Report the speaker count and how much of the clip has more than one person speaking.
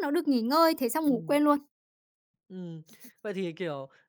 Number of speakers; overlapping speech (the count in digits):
2, about 4%